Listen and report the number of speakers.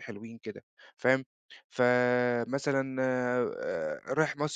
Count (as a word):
one